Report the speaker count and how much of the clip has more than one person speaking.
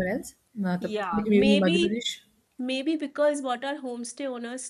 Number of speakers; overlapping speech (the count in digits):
2, about 25%